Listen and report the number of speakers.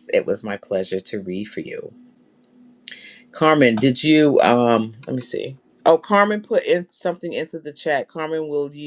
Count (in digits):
1